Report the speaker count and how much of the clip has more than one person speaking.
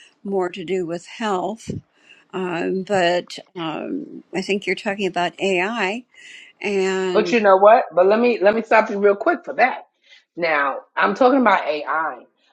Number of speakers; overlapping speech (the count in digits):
2, about 2%